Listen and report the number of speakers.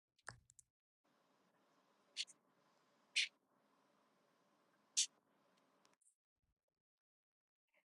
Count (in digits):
0